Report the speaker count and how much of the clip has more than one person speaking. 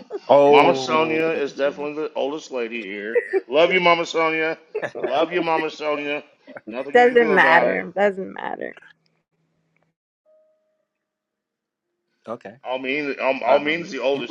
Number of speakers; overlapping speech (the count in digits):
3, about 14%